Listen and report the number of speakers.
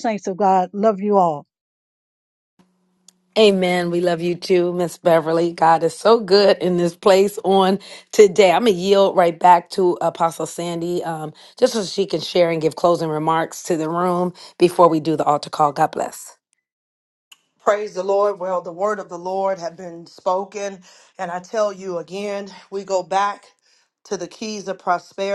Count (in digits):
3